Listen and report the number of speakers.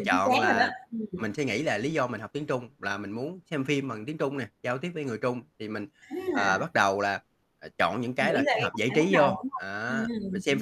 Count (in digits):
2